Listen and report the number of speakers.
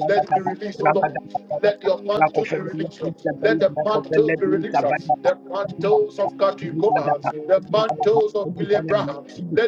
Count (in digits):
2